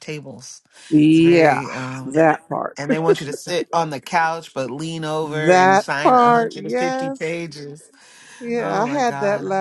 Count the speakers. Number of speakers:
two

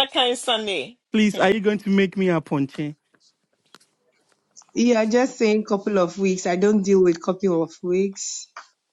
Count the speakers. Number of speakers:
three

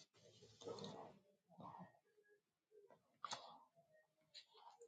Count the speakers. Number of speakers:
zero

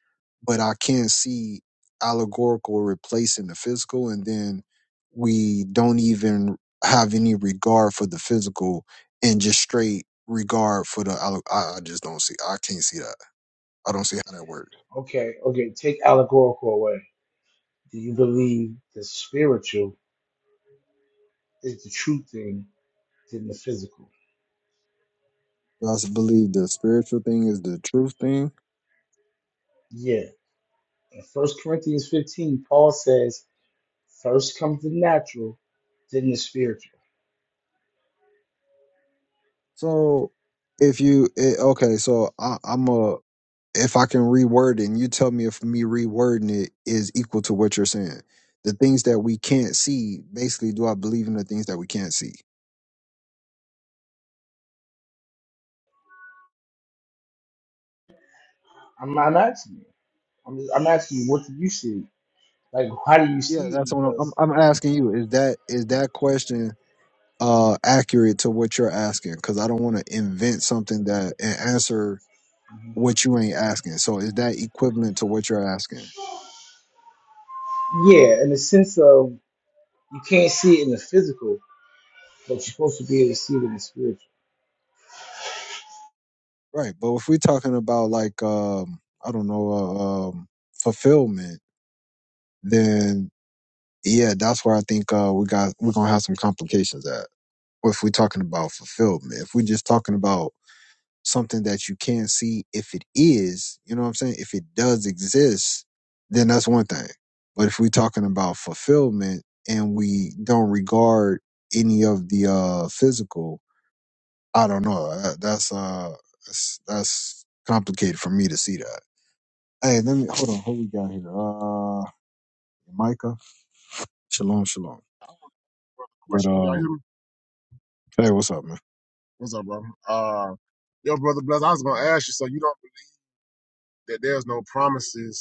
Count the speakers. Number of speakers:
three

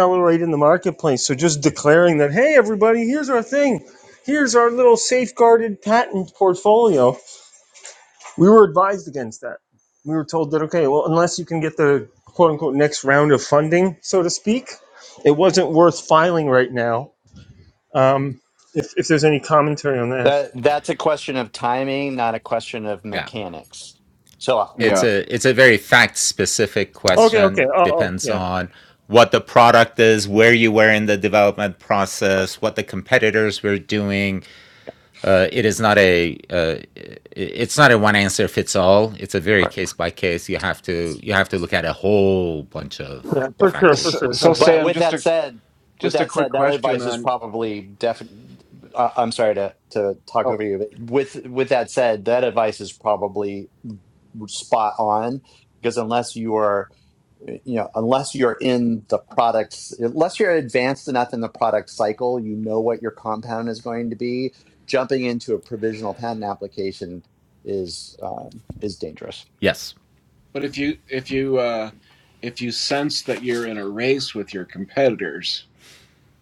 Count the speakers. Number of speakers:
four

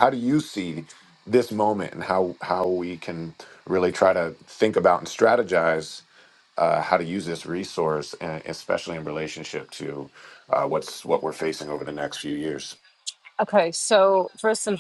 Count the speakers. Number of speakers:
two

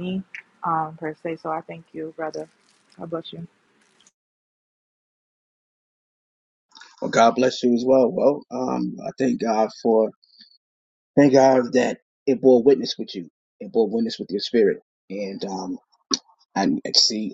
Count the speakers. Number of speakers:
two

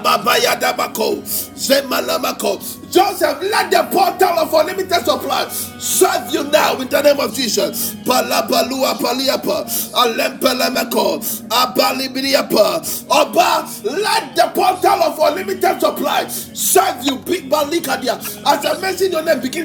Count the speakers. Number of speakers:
one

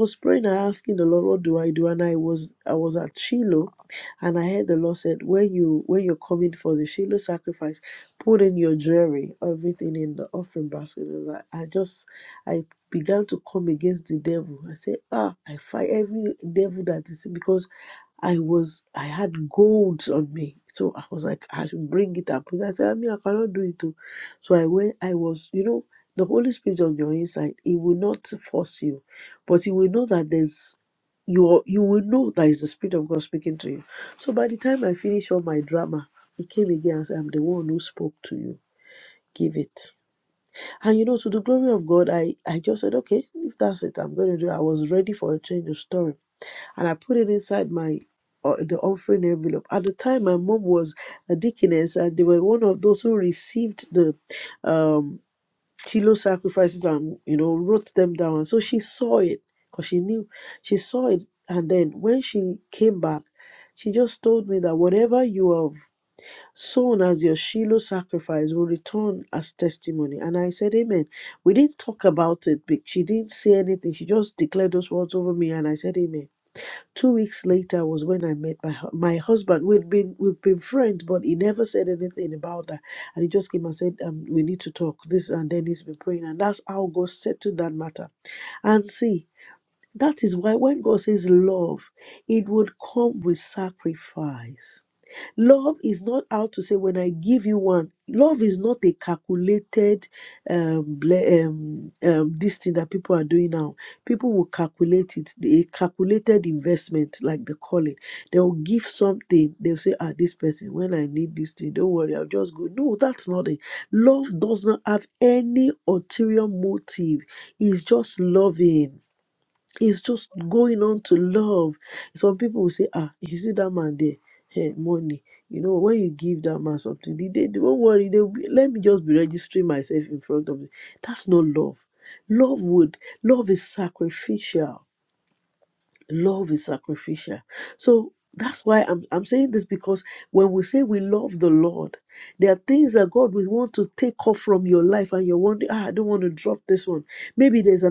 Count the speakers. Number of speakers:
one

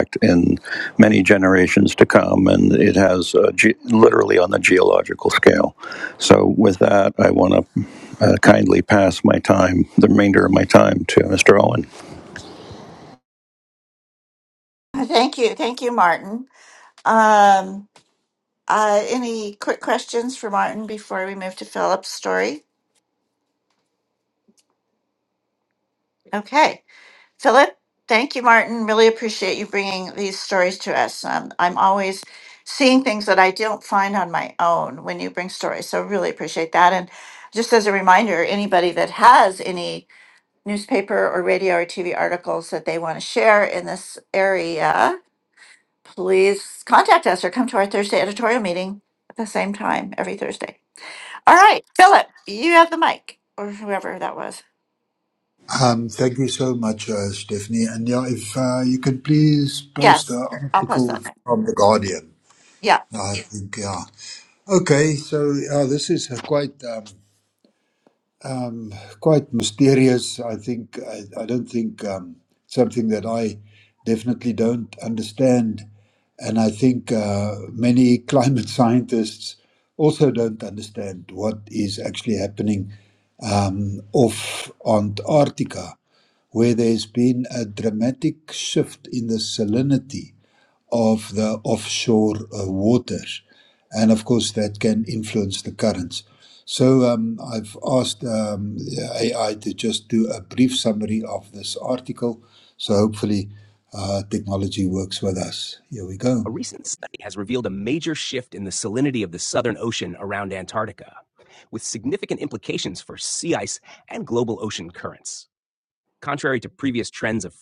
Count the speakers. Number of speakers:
four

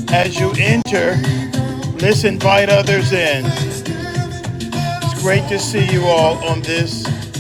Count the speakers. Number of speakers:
one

